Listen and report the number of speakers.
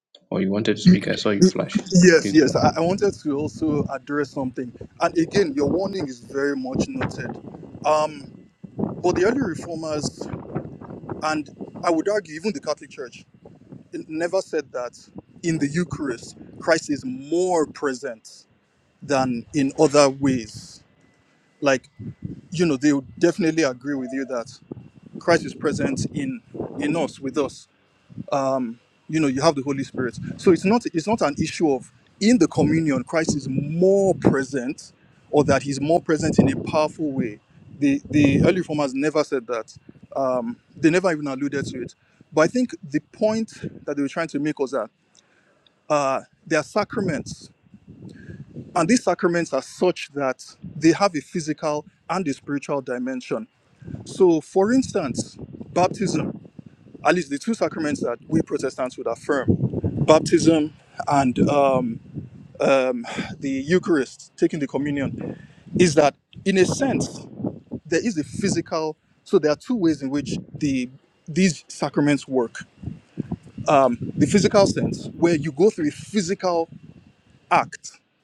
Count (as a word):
two